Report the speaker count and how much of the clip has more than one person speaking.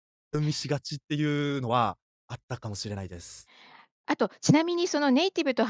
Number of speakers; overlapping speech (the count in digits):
2, no overlap